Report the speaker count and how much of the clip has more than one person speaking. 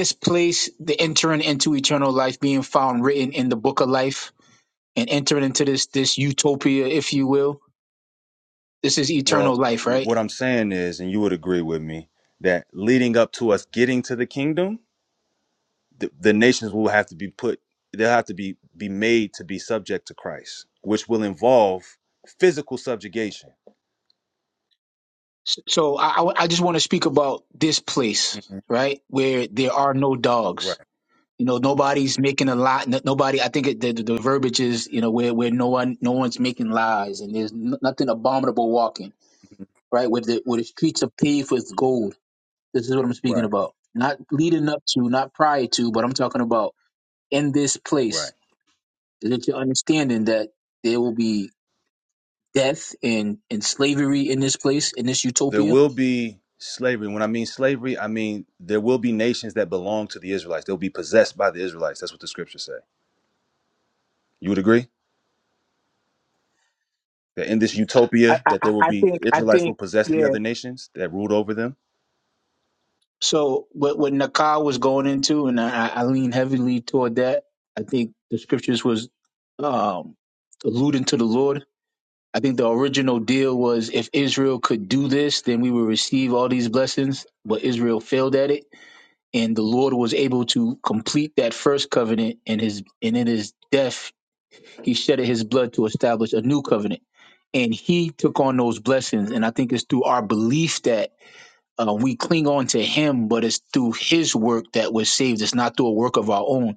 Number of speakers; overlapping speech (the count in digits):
2, about 3%